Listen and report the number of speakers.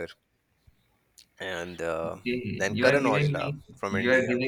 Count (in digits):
2